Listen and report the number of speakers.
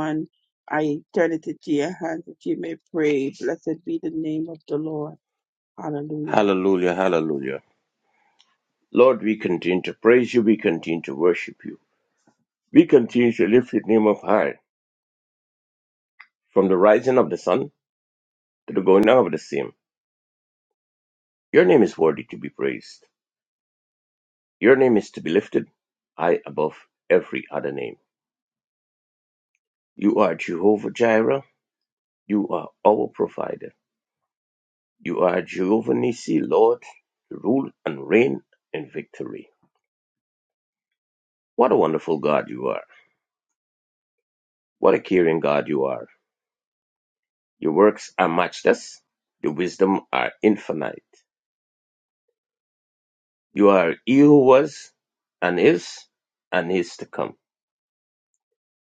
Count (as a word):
two